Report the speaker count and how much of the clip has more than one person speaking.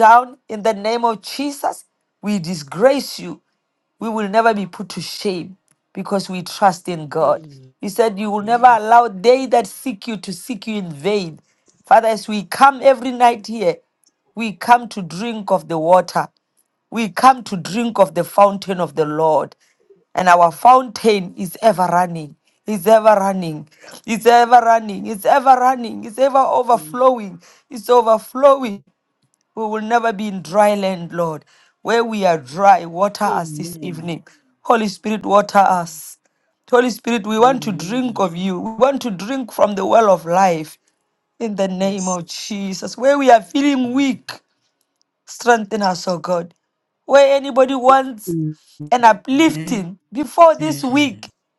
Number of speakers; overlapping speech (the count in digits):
2, about 8%